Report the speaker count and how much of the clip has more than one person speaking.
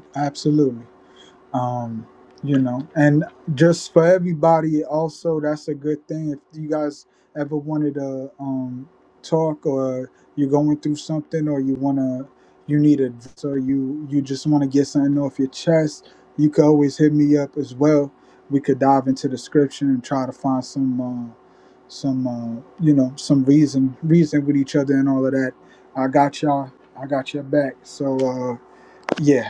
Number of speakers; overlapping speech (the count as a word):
one, no overlap